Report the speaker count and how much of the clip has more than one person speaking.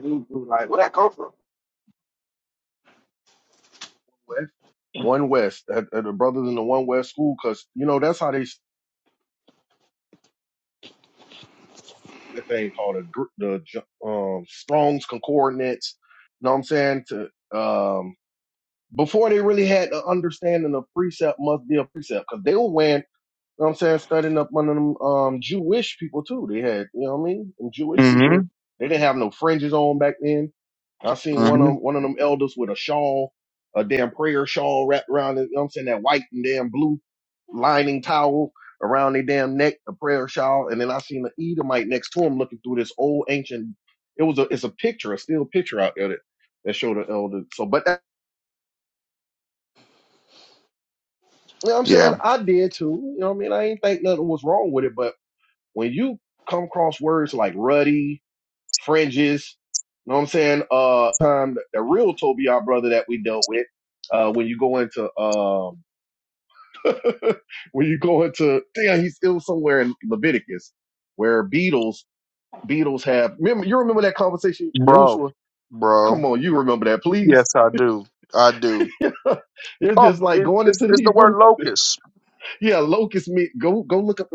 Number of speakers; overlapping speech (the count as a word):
three, about 4%